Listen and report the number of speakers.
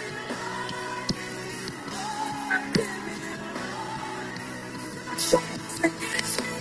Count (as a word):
zero